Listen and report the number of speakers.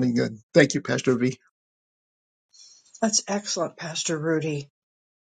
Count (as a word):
two